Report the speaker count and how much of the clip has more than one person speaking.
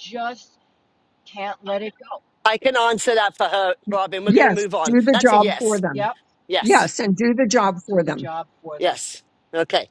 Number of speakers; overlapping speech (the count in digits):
3, about 22%